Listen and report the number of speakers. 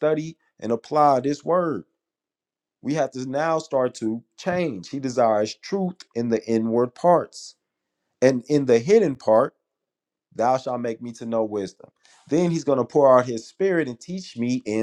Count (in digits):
1